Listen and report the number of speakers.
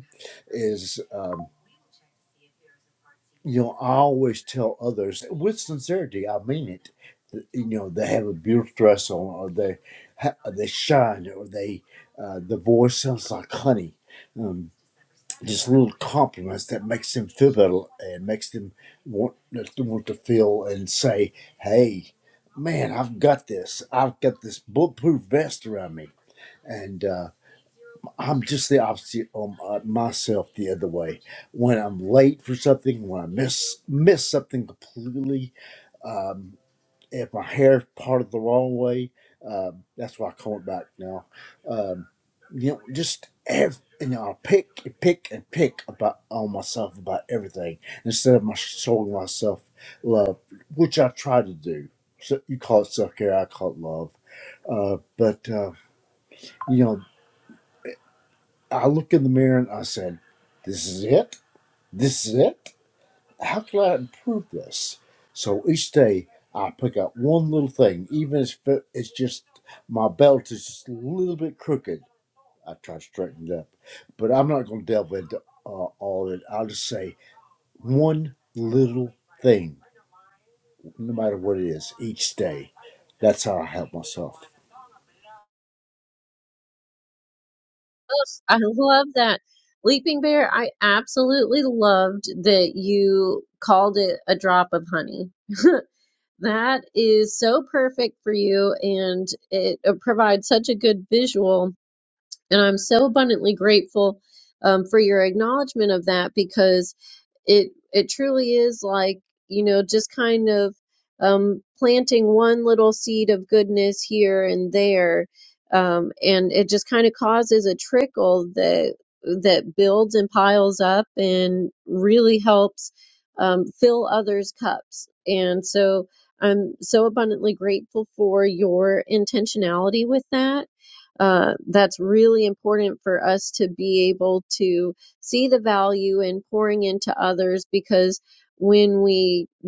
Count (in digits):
2